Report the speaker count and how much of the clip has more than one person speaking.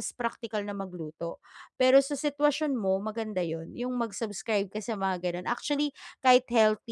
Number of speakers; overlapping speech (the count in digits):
1, no overlap